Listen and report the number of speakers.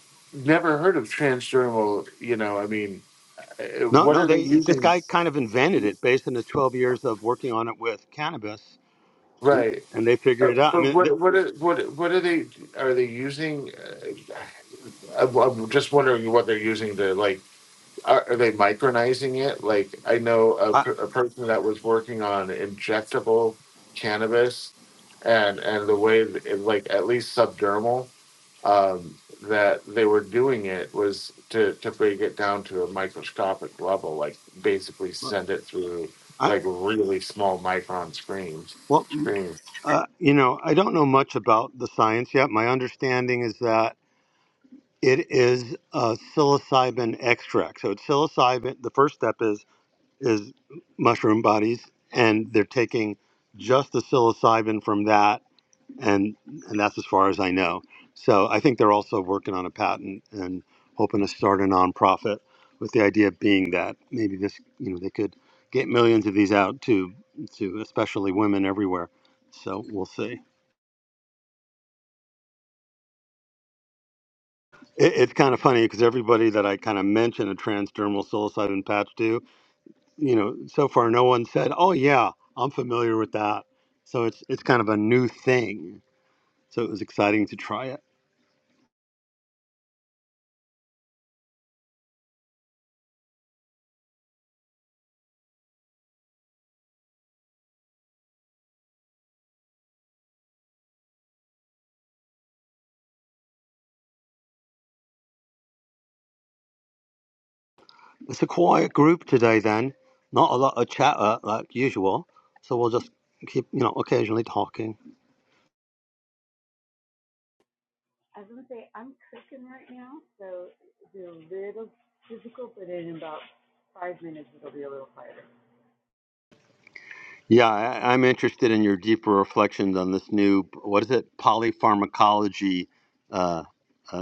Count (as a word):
three